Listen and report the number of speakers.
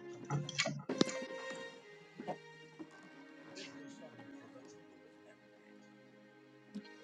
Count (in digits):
0